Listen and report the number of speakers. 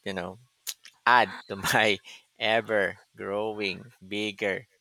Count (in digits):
1